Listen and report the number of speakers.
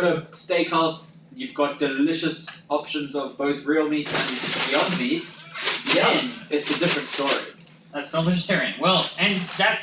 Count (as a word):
two